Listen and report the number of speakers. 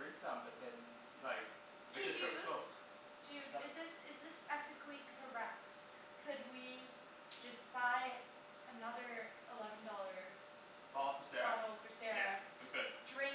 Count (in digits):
2